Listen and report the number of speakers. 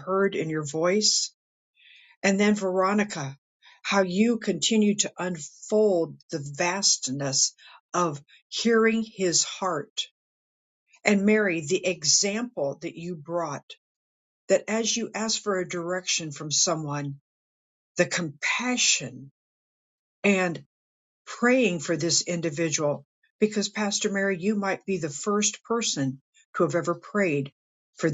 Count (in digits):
1